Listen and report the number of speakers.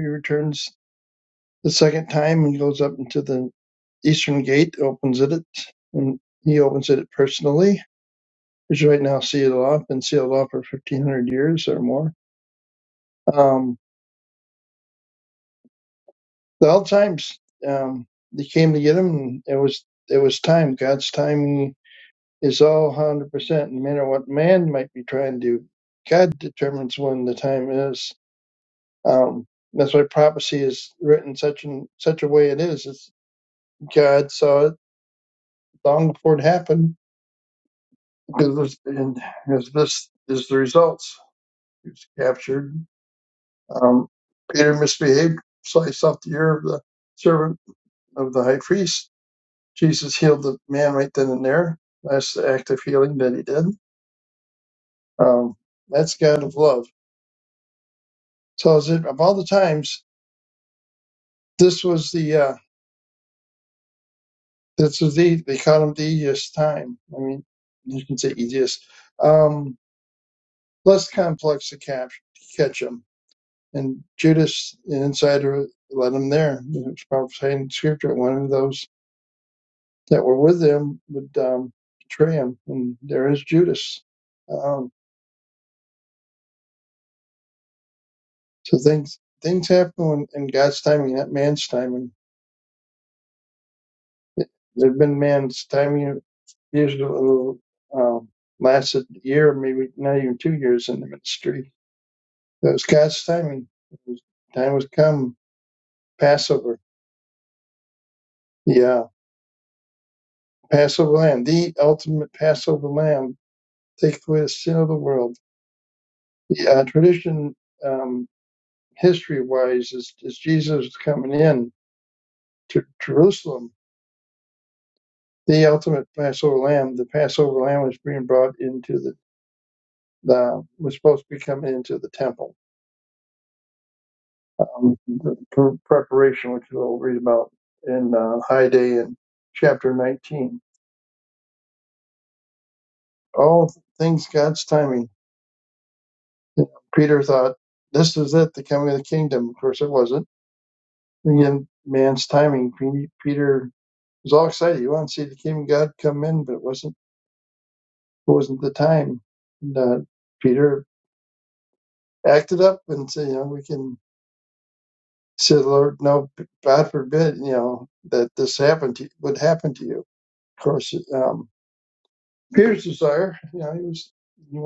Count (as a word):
one